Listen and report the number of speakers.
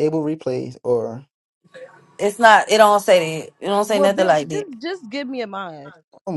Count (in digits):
3